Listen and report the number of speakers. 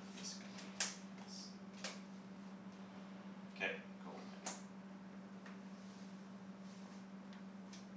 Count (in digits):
1